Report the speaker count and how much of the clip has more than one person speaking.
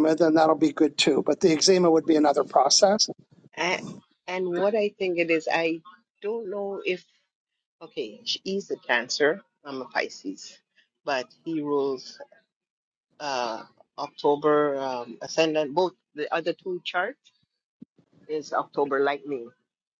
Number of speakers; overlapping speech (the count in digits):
2, no overlap